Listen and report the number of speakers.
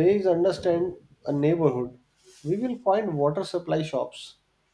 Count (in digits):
1